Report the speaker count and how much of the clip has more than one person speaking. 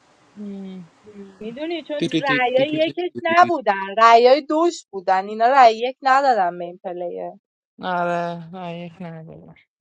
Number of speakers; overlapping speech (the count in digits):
2, no overlap